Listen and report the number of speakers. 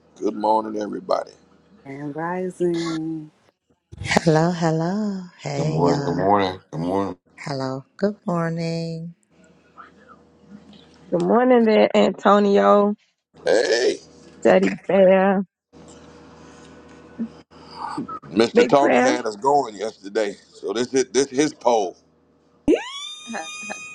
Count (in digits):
5